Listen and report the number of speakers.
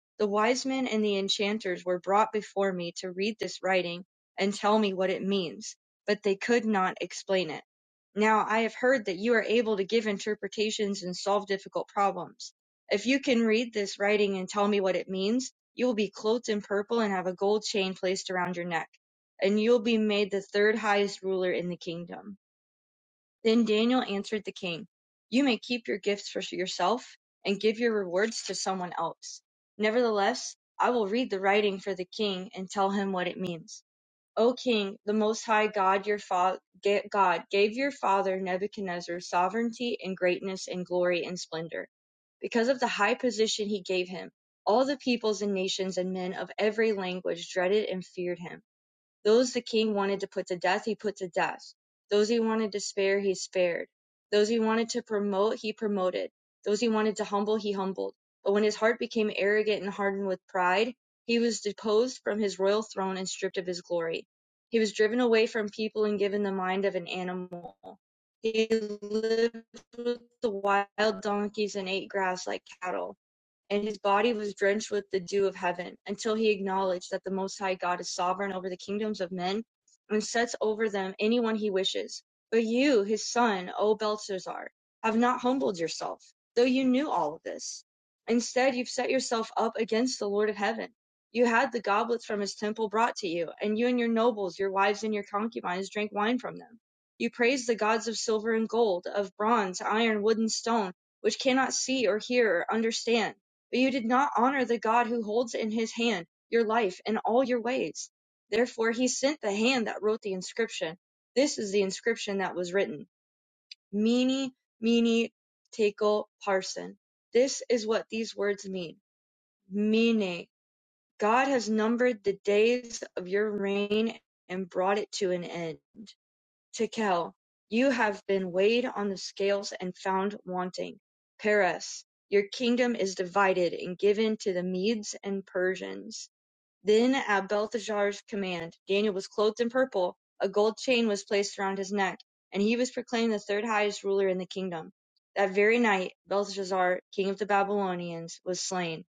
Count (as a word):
one